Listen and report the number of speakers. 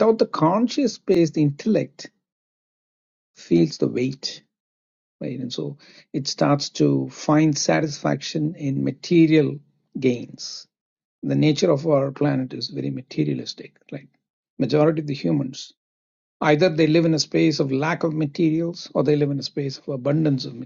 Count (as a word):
one